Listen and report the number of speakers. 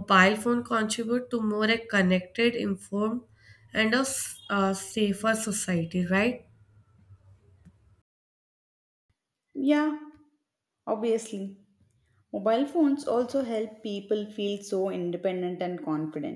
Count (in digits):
2